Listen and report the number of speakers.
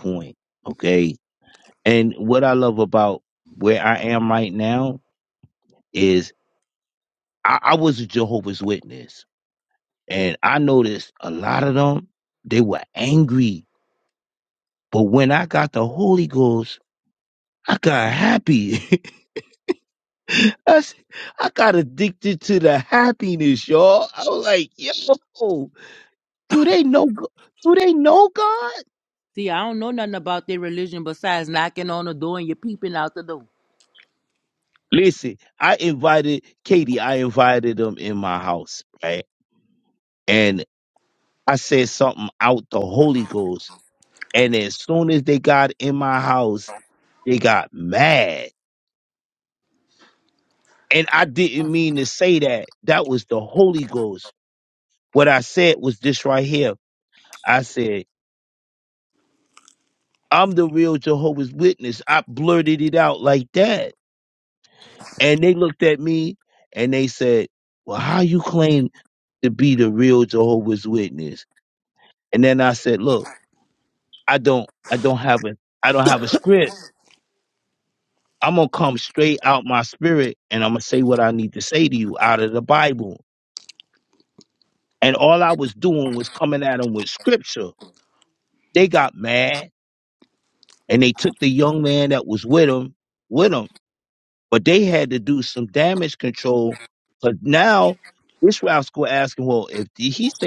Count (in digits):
2